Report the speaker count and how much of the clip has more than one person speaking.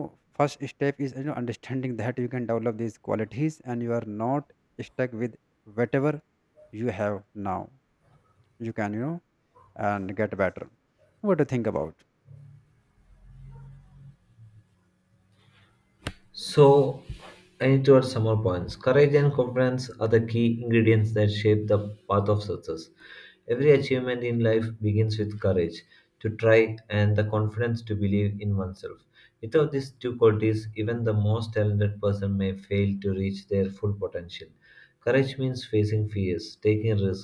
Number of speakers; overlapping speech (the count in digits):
2, no overlap